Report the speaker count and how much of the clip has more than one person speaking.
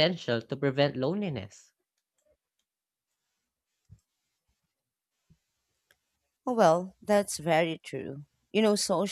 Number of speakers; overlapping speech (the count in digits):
2, no overlap